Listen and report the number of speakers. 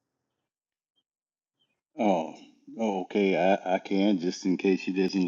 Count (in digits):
1